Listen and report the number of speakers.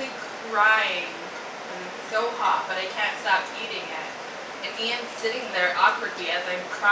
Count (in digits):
1